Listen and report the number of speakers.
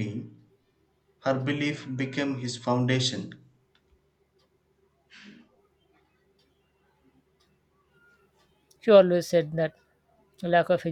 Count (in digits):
2